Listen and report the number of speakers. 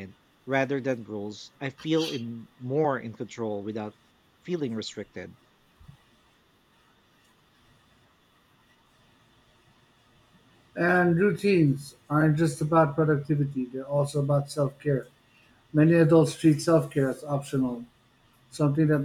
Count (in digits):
2